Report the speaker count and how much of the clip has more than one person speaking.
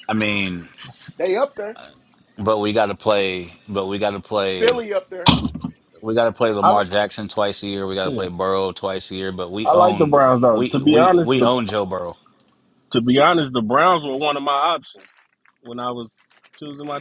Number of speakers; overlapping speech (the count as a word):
three, about 12%